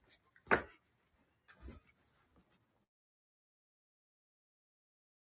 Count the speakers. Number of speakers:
0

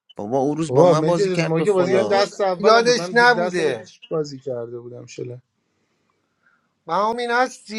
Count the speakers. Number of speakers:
3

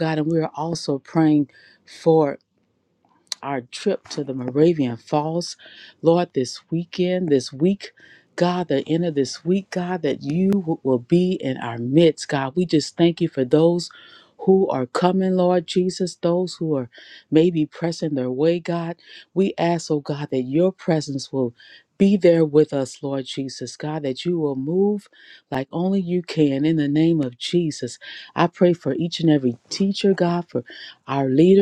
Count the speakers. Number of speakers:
1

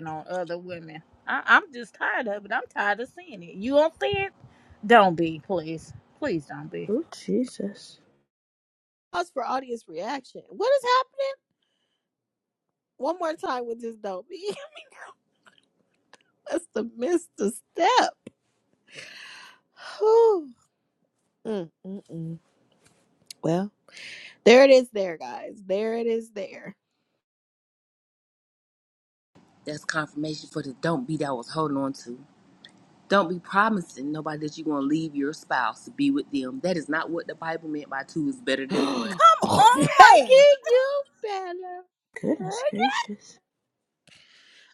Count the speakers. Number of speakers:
4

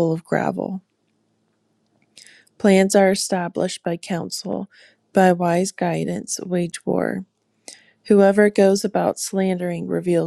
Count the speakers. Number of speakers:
1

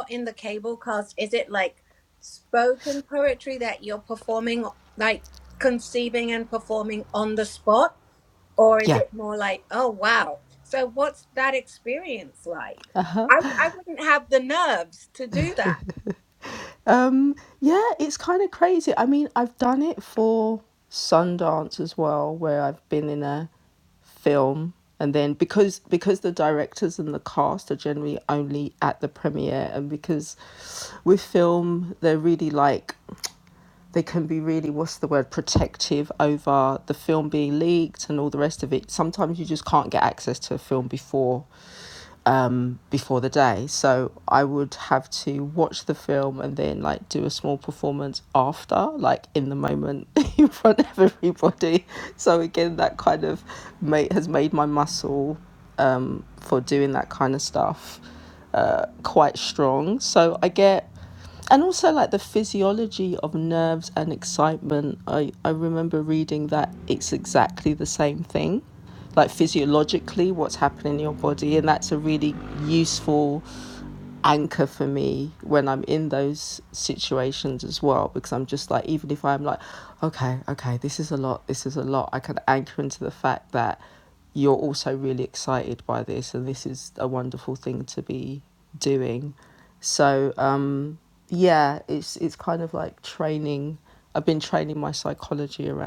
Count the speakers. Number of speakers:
2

